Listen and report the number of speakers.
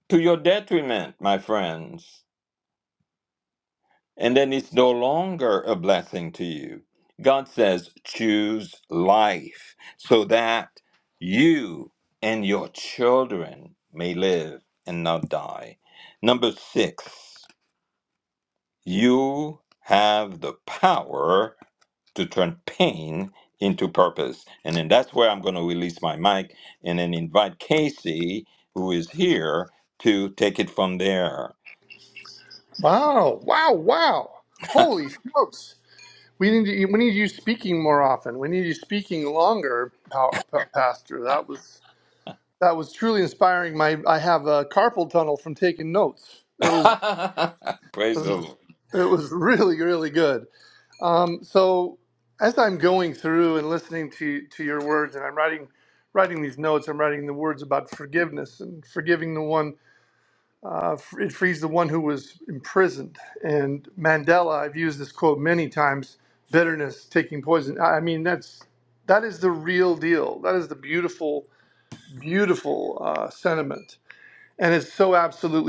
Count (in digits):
2